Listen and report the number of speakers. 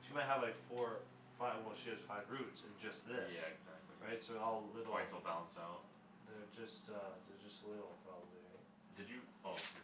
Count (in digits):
2